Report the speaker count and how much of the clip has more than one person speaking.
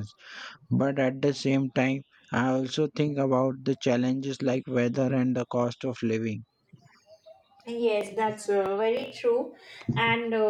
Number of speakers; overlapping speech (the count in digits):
2, no overlap